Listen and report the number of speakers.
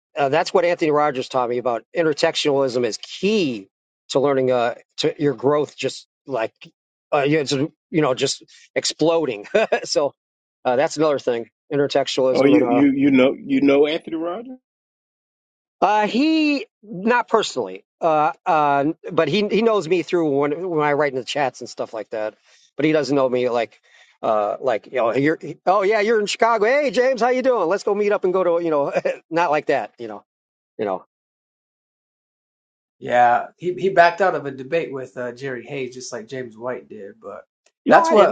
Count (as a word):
three